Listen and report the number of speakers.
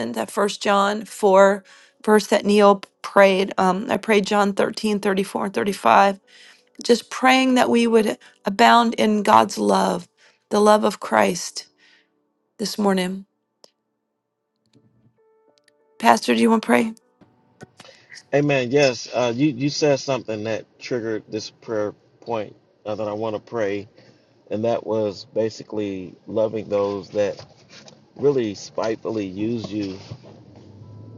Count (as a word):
two